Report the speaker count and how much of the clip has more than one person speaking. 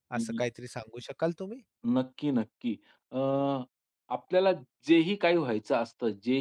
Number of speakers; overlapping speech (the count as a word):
two, about 4%